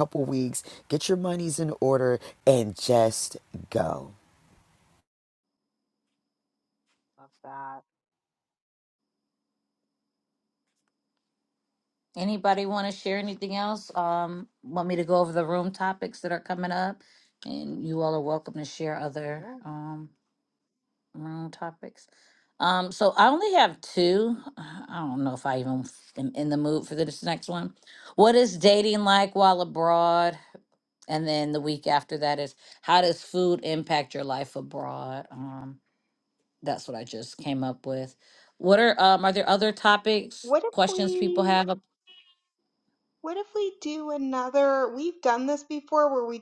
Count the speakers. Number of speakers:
three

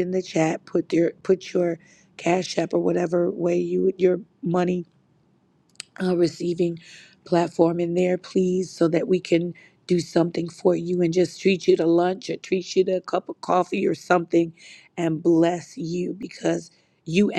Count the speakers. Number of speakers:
one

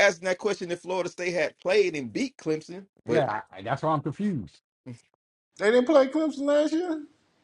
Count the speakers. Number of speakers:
three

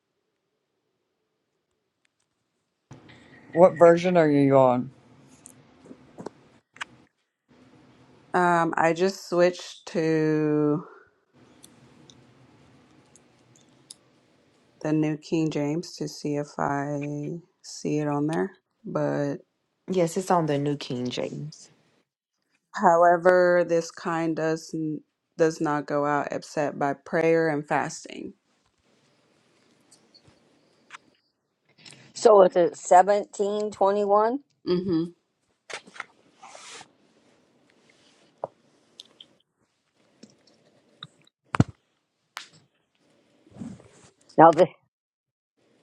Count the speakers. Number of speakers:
four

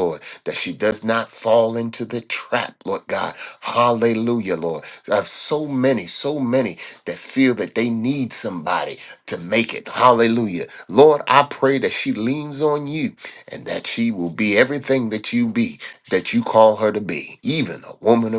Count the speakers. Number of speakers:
one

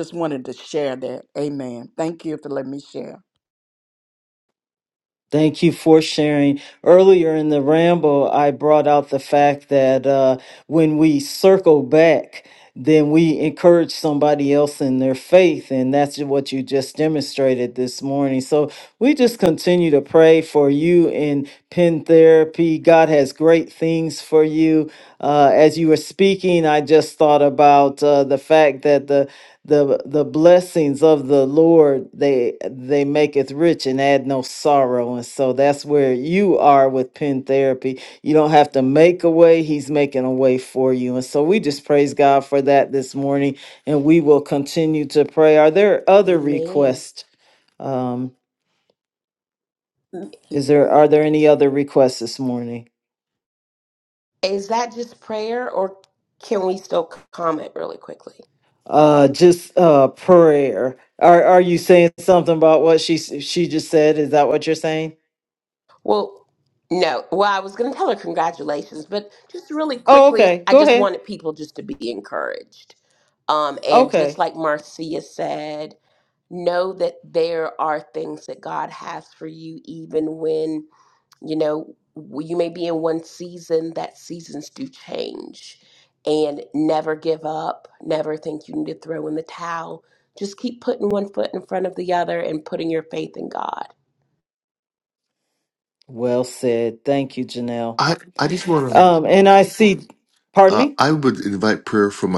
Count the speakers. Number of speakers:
four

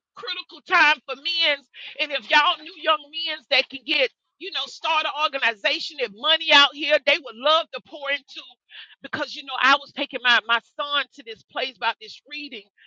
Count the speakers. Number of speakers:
one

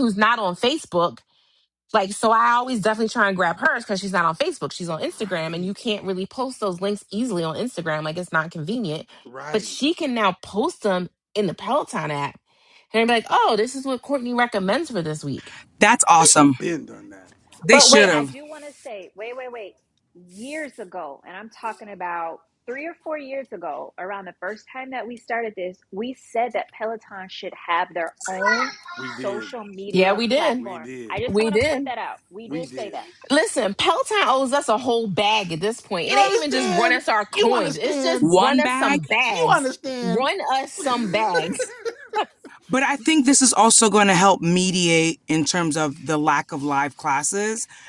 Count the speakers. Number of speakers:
four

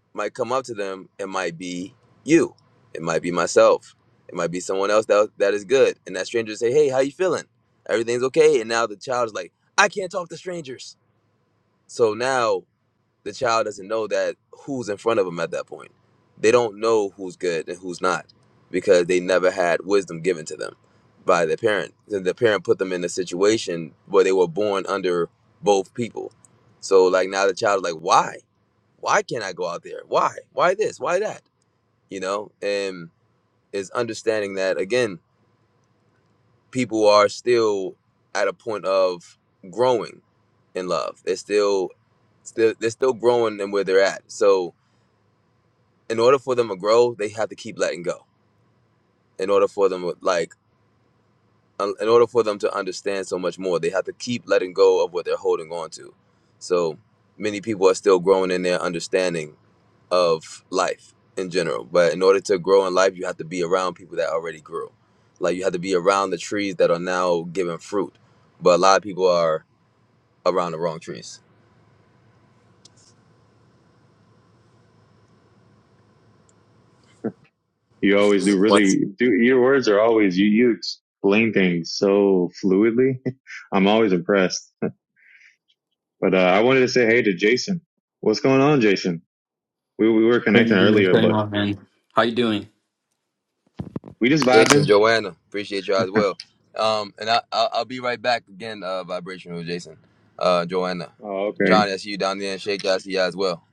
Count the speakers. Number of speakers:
three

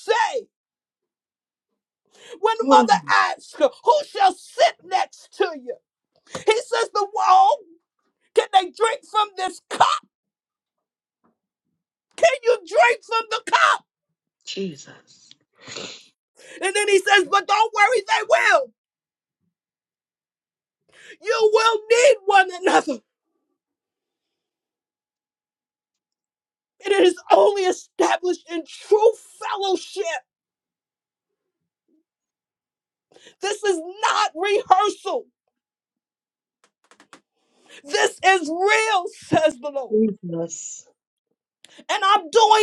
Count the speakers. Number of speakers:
two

